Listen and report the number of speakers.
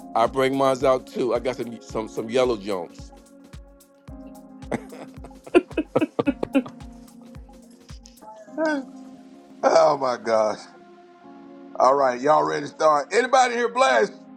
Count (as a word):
two